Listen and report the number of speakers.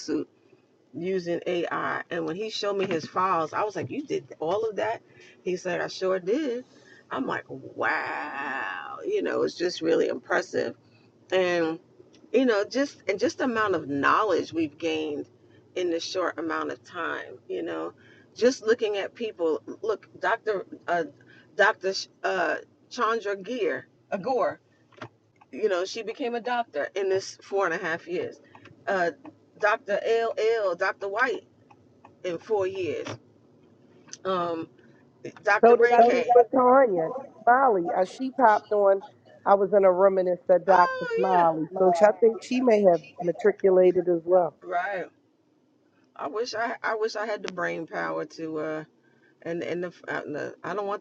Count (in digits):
2